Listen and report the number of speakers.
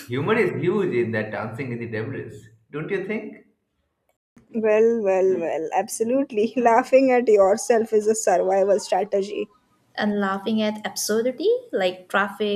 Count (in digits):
3